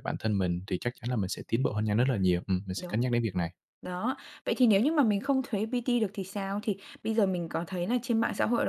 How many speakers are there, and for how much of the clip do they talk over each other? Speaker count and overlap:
2, about 3%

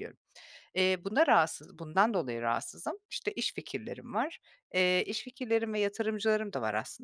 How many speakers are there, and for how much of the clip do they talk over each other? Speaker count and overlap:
1, no overlap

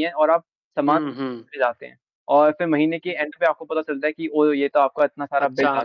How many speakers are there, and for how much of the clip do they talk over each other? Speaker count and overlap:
2, about 12%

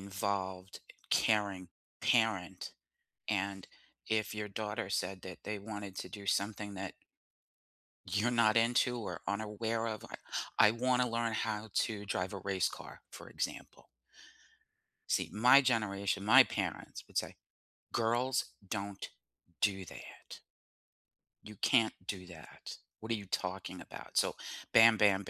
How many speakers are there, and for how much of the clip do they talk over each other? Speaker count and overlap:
1, no overlap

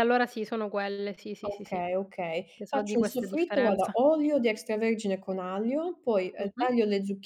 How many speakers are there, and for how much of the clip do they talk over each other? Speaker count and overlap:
2, about 28%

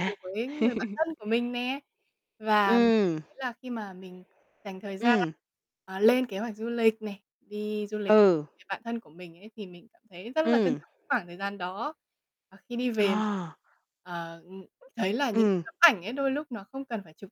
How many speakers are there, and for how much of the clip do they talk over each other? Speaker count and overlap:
2, about 9%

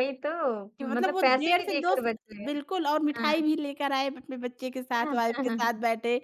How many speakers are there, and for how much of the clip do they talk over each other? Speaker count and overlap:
2, about 30%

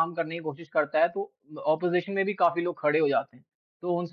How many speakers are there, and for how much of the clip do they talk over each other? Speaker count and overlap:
1, no overlap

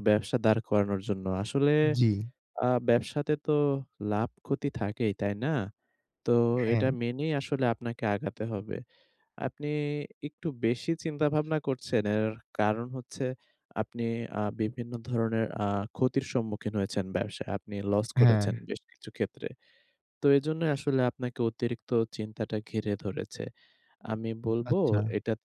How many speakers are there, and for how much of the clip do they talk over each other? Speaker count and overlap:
2, about 4%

